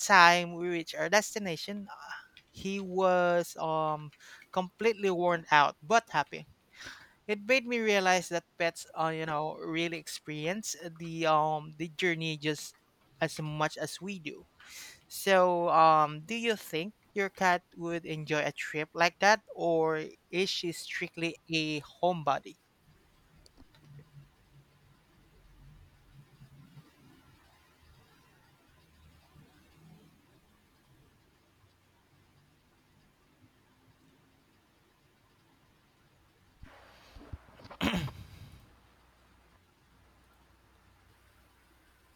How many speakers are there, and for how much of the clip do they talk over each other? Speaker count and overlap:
1, no overlap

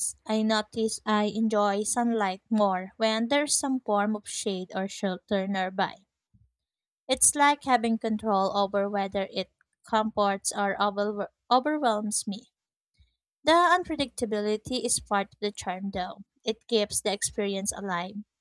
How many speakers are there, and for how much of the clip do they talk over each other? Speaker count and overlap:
1, no overlap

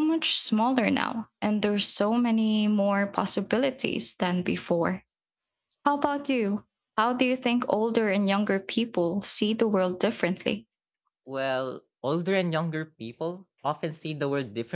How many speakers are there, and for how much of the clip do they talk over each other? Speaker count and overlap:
2, no overlap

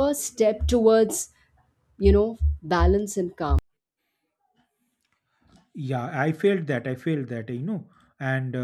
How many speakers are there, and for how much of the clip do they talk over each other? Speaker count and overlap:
2, no overlap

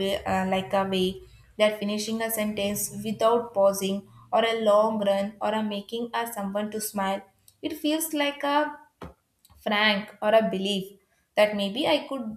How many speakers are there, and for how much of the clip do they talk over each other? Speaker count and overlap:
1, no overlap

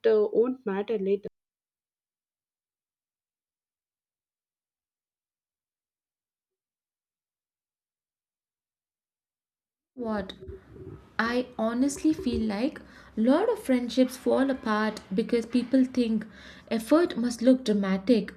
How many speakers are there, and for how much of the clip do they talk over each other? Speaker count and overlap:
2, no overlap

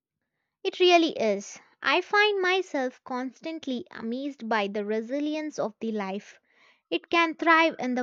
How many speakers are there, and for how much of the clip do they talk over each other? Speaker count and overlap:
1, no overlap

